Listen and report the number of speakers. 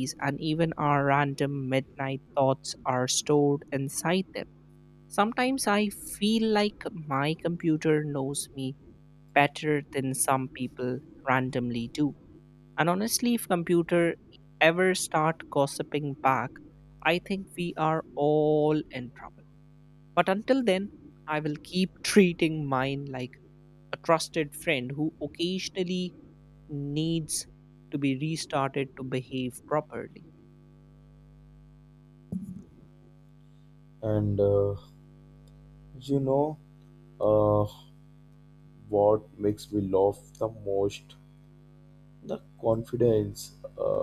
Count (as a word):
two